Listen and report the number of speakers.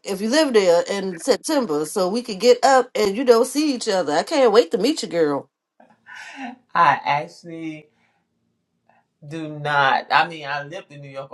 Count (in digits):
2